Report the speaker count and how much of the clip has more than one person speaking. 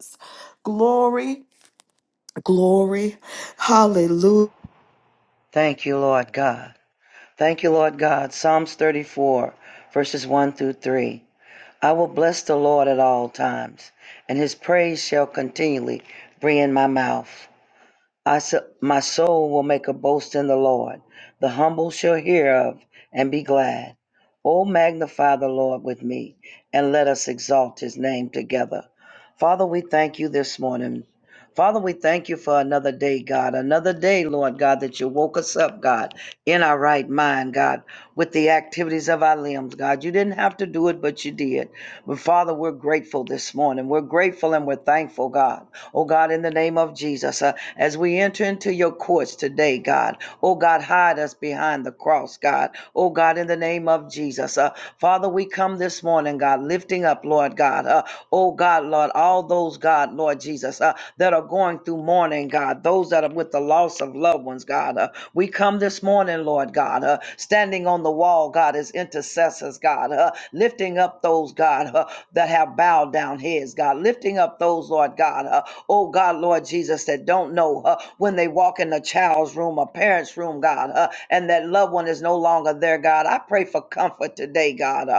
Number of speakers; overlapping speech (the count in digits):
2, no overlap